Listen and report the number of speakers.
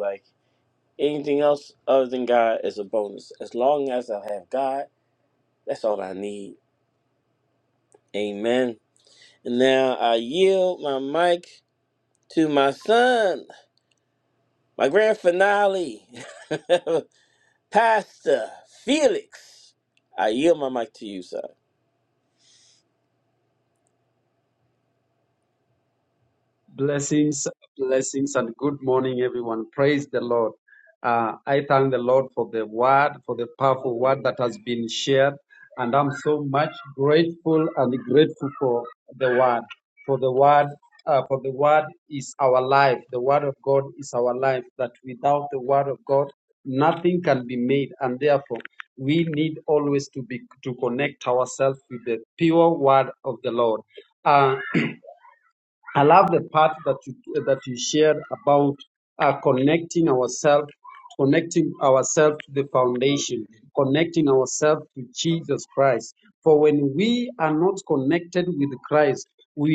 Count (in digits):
2